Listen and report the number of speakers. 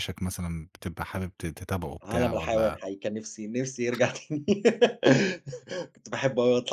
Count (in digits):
2